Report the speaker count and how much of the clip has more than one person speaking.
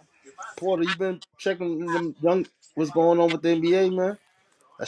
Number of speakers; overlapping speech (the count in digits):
1, no overlap